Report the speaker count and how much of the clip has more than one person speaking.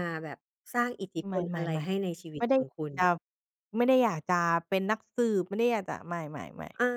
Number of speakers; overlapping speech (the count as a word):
two, about 8%